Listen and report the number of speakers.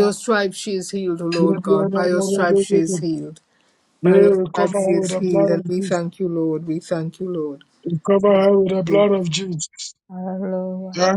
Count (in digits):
3